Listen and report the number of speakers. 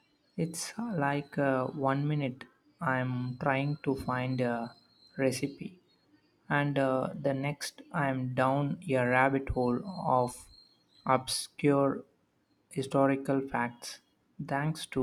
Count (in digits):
1